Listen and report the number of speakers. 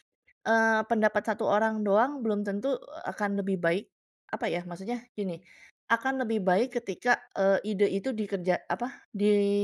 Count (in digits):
1